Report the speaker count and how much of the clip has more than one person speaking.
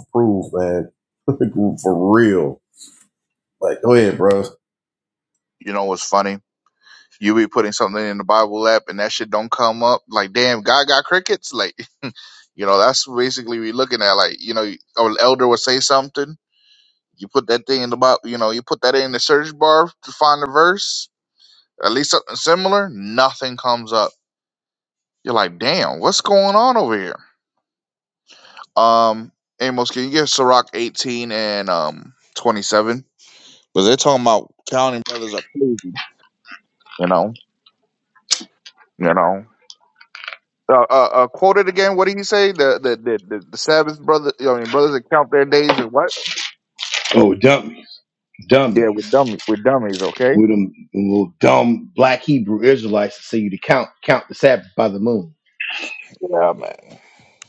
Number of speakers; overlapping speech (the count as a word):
three, about 1%